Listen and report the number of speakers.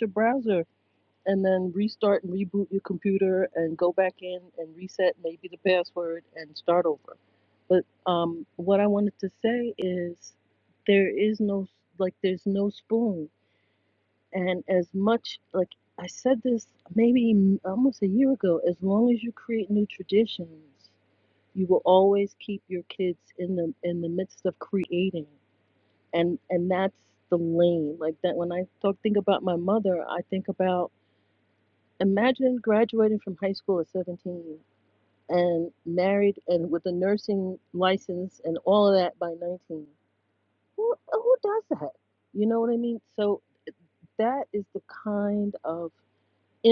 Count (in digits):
1